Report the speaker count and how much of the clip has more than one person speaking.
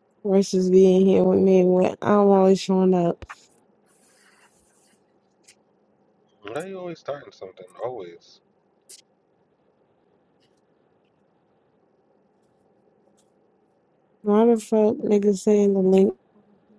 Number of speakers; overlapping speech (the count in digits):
2, no overlap